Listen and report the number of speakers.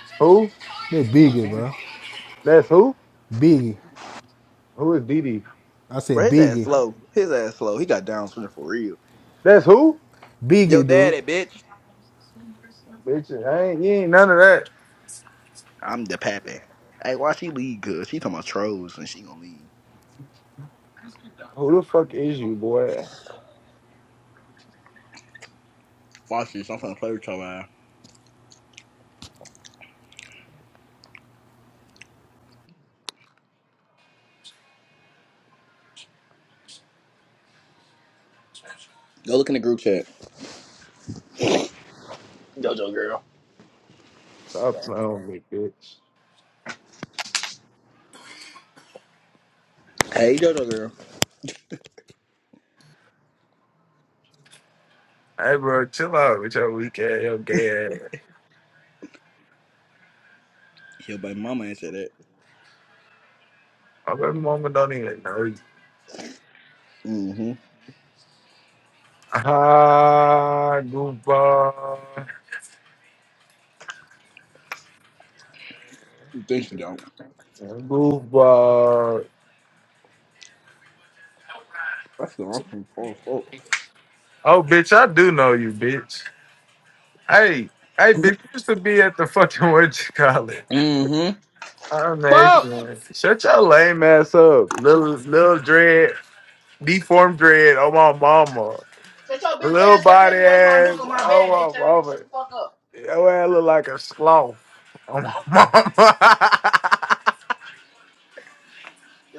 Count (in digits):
3